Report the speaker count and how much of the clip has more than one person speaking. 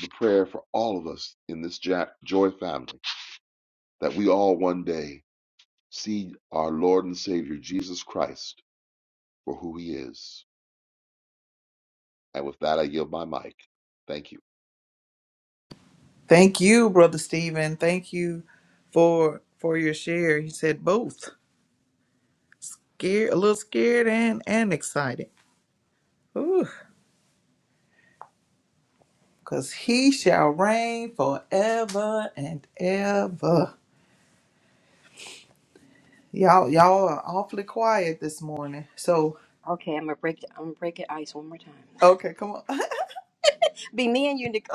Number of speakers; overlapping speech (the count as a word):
three, under 1%